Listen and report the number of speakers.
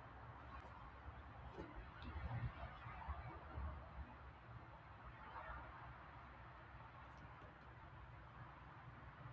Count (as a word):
zero